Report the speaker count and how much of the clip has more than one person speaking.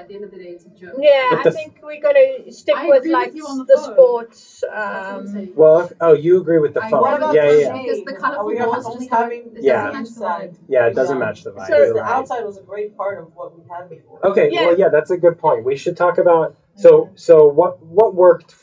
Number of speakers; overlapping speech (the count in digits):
4, about 41%